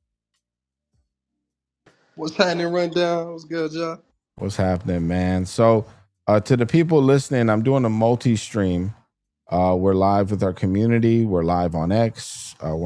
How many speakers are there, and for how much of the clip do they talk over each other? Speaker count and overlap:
2, no overlap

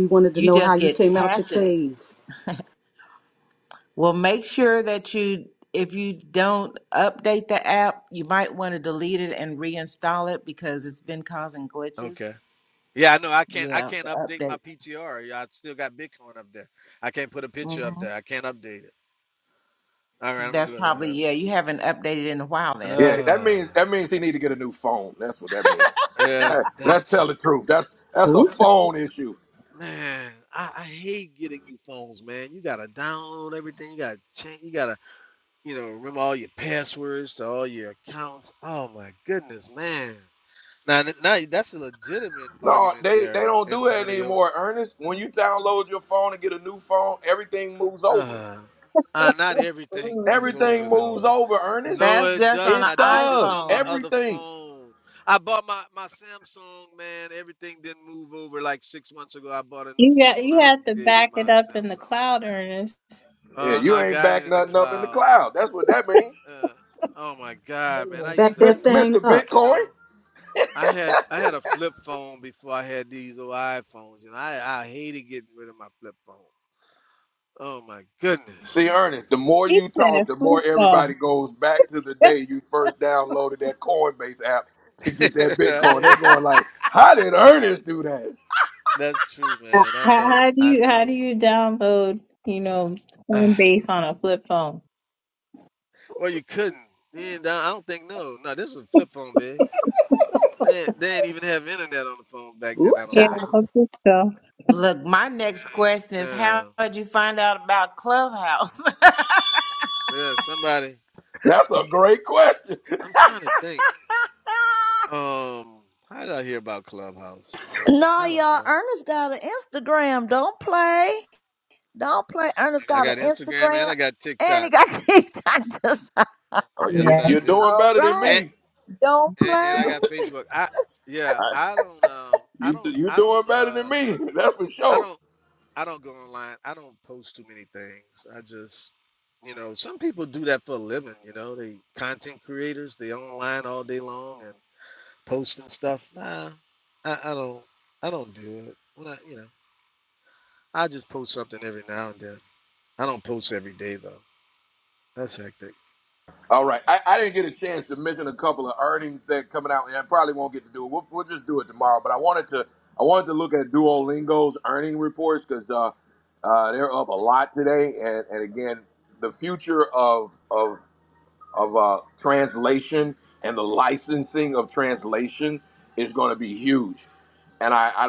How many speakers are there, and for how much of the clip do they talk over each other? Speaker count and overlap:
6, about 15%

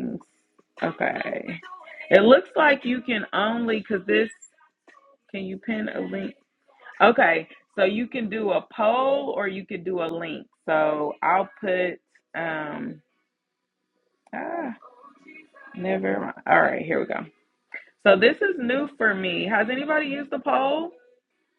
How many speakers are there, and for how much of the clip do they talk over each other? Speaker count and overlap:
1, no overlap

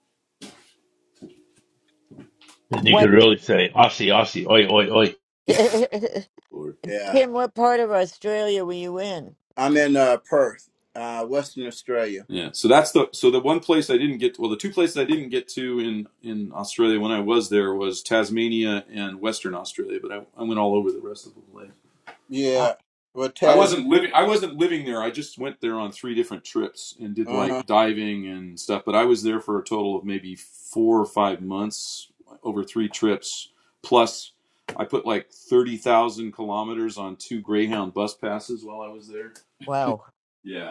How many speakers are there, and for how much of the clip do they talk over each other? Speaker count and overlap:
4, about 3%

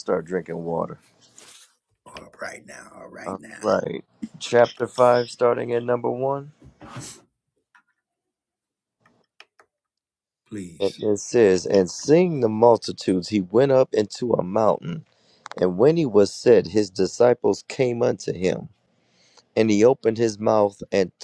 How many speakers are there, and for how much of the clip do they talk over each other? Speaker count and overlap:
2, about 3%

